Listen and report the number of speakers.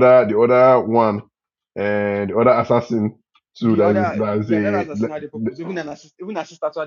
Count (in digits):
2